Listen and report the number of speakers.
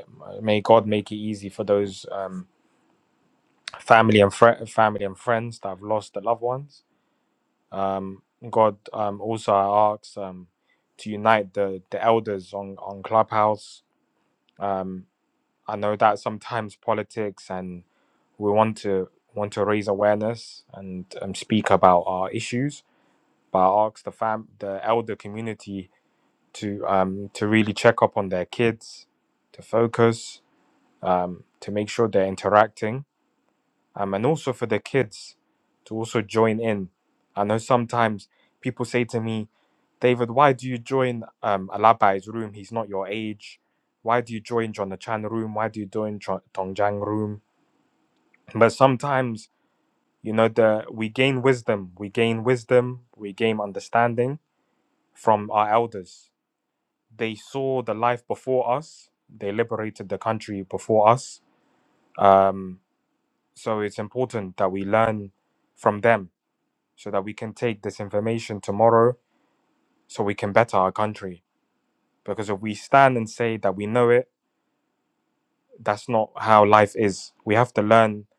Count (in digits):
1